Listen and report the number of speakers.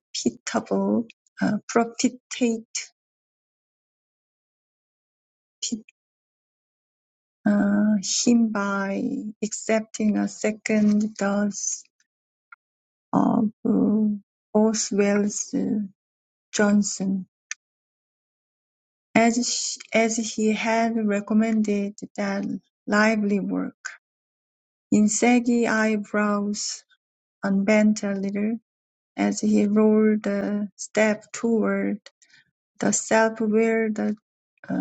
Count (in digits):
1